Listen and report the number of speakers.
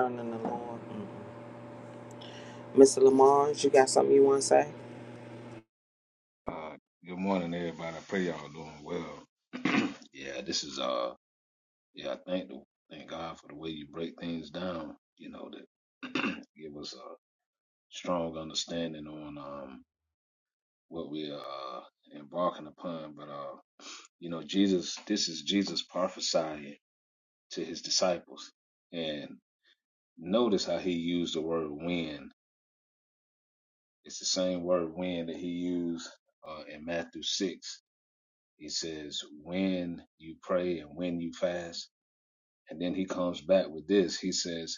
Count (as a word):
two